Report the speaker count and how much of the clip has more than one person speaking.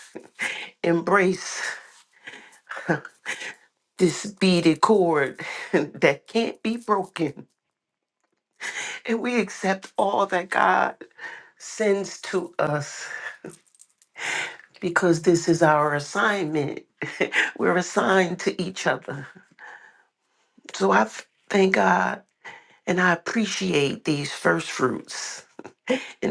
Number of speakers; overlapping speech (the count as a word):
one, no overlap